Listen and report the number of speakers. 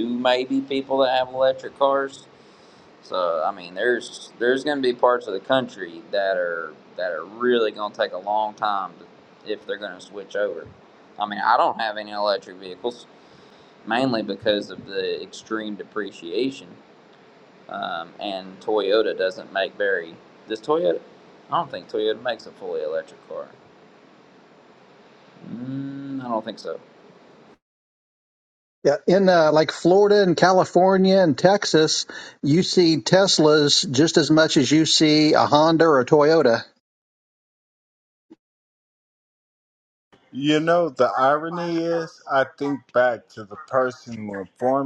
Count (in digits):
3